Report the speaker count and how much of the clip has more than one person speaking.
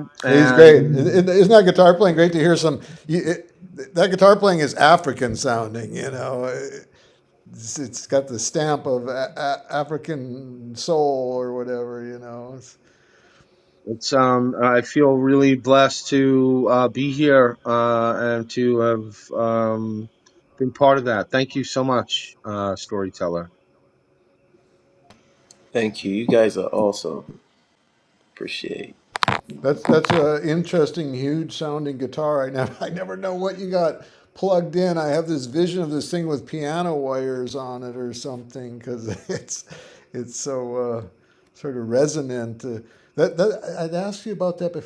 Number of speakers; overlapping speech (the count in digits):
3, about 2%